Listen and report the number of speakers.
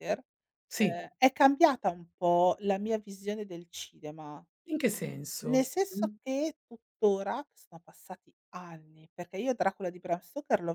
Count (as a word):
two